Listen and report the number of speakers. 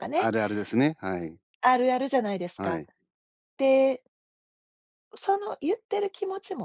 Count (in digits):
2